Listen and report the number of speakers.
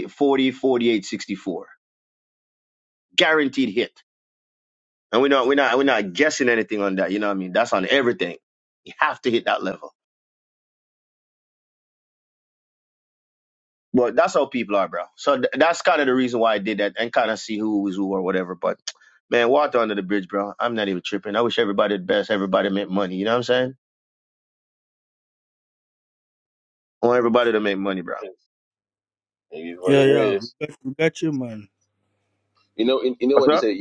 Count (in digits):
3